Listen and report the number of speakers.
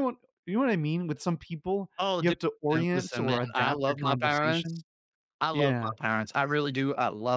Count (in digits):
2